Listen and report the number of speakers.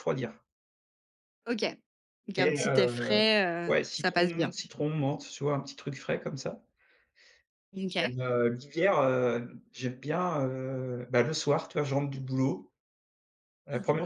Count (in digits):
2